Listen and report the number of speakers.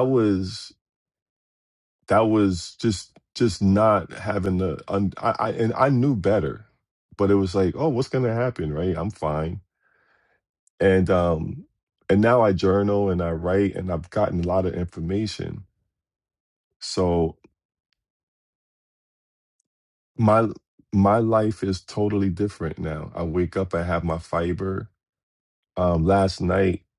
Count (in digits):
1